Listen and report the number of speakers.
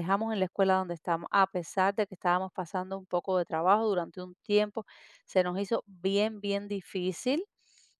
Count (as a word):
one